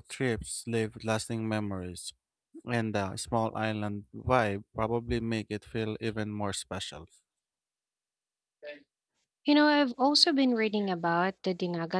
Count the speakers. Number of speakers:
2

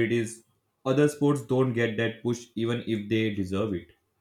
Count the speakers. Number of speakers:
1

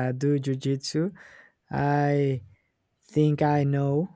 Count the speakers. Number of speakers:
1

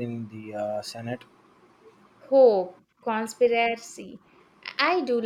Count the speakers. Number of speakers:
2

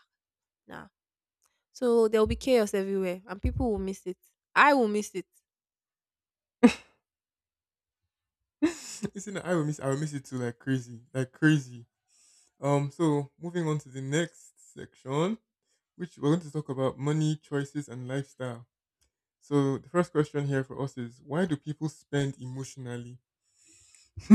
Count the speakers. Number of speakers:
2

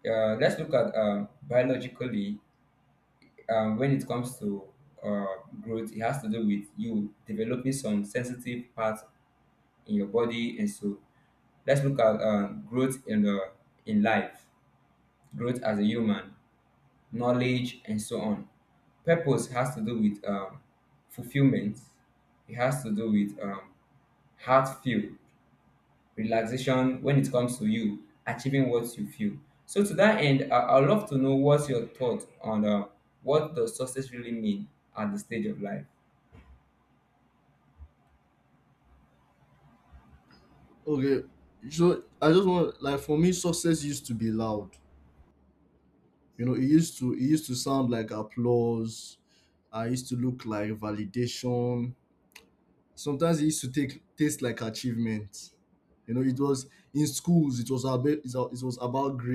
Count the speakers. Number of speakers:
2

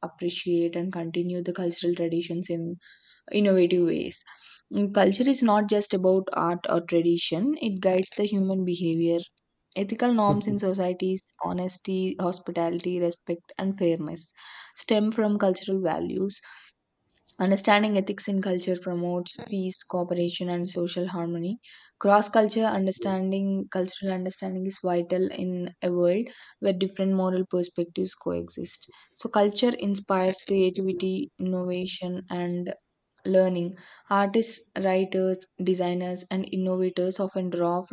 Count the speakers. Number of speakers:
1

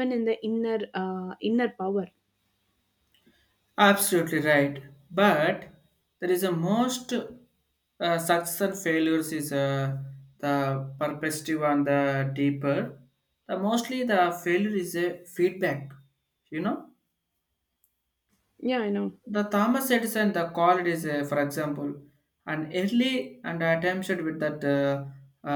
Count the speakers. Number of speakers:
2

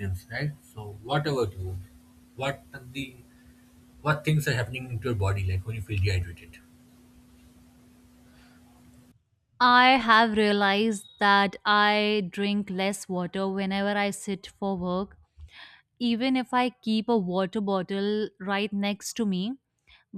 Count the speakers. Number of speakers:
2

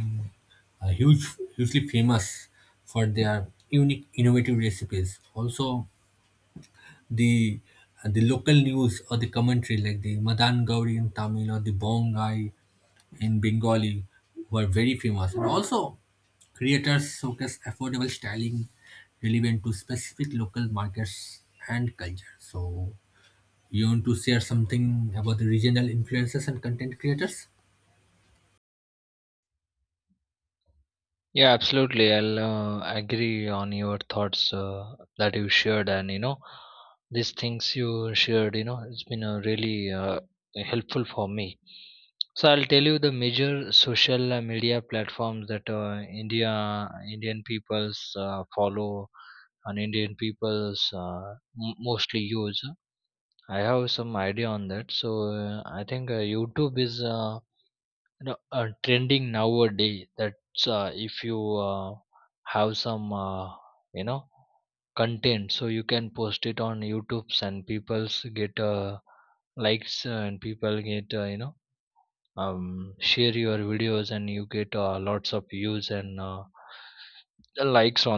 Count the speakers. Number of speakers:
2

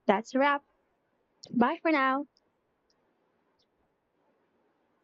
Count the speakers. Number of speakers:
1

